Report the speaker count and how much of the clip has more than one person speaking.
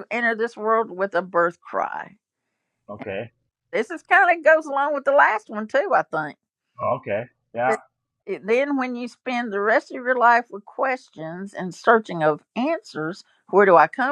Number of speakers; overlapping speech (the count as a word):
two, about 2%